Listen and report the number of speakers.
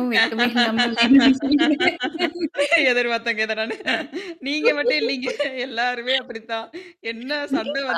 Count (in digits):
2